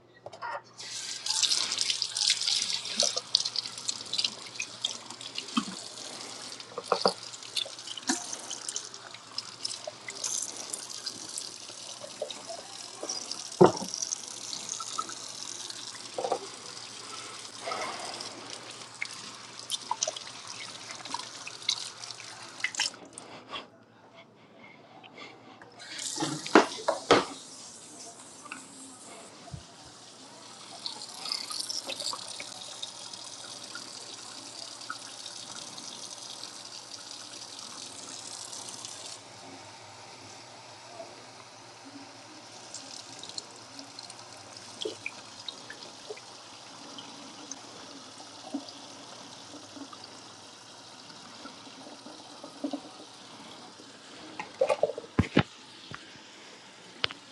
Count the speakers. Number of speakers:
0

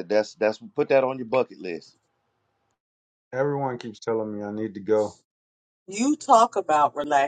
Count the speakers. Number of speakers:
3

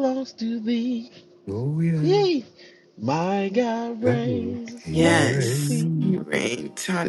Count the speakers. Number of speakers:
3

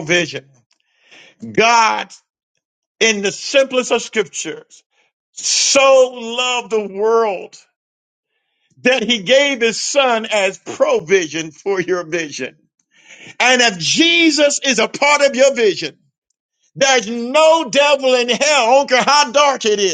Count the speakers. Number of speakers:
1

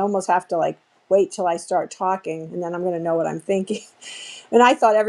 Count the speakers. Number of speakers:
1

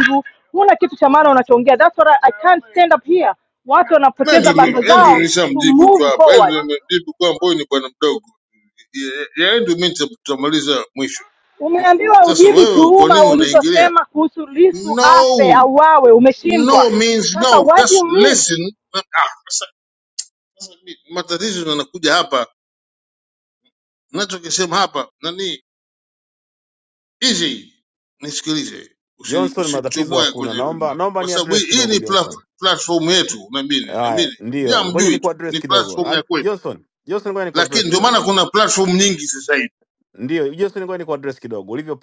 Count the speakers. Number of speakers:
3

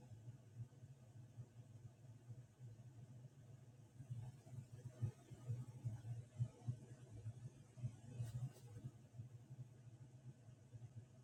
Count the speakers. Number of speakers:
0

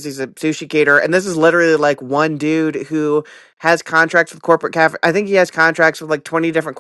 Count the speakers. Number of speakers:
1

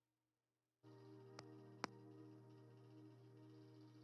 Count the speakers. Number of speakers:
0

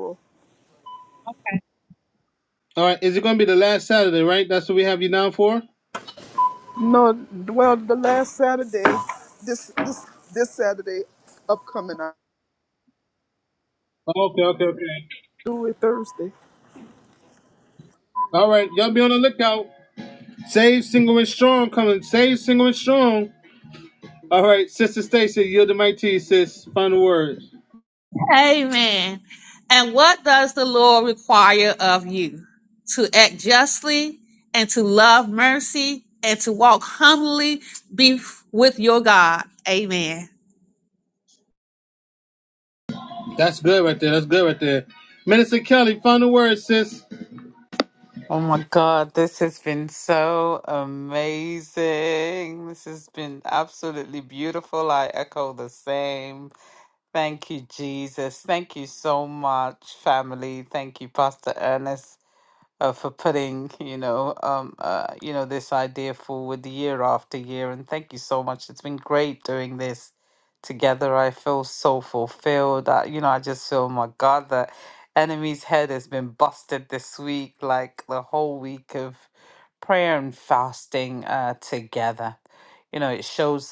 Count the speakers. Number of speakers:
4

